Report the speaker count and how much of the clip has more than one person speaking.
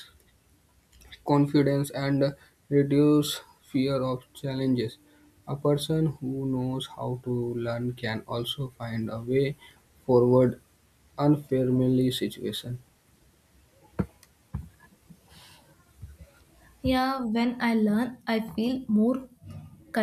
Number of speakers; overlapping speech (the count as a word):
two, no overlap